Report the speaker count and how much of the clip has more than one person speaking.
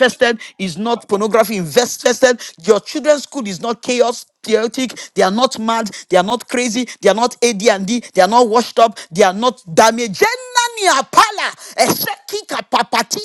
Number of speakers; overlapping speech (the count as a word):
one, no overlap